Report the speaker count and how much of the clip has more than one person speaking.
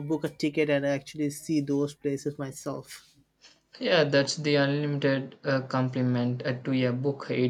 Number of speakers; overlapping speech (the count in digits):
2, no overlap